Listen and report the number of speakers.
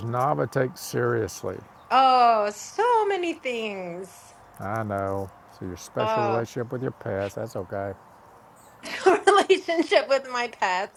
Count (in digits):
2